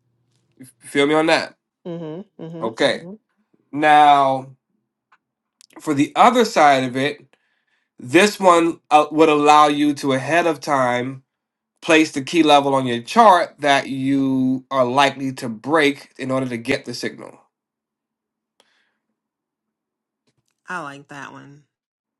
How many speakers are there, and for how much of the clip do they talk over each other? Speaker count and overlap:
two, about 2%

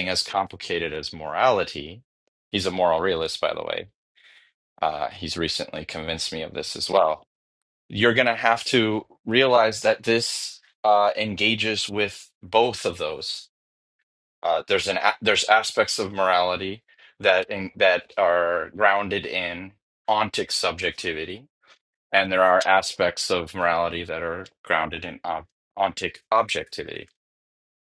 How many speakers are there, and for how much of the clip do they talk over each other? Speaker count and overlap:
one, no overlap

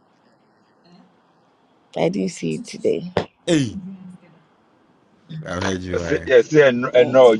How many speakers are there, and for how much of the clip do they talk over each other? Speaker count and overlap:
three, about 9%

